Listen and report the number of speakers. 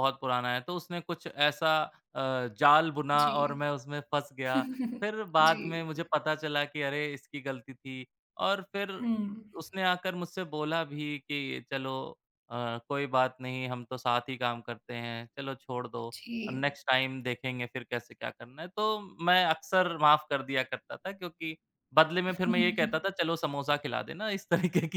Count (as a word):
two